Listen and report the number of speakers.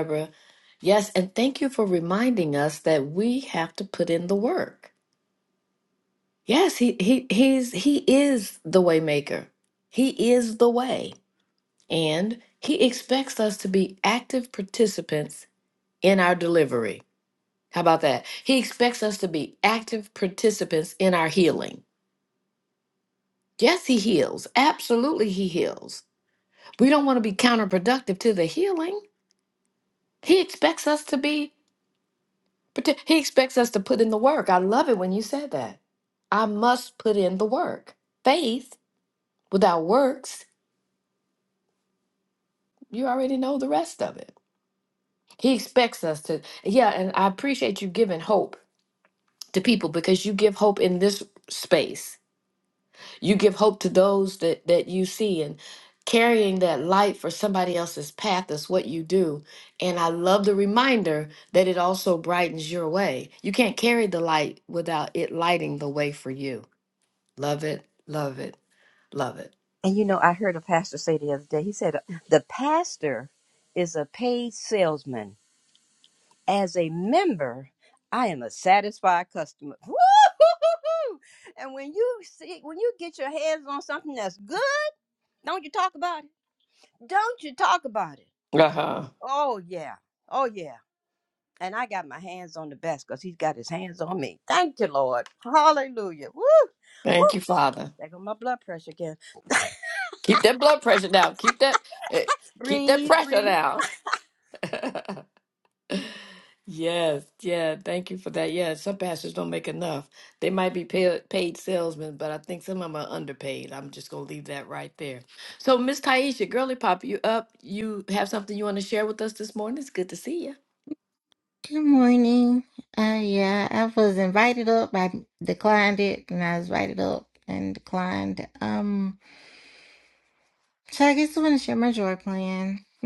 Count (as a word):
three